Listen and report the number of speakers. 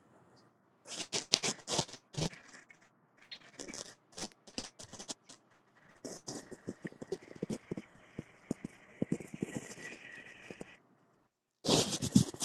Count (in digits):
0